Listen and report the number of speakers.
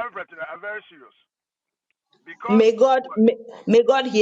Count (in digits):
2